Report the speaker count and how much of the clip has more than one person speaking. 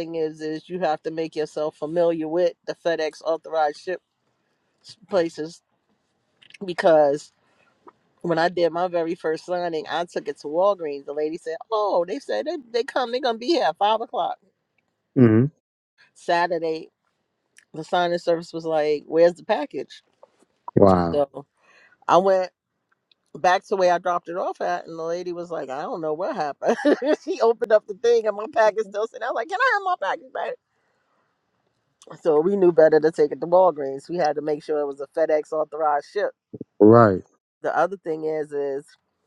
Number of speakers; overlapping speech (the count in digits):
2, under 1%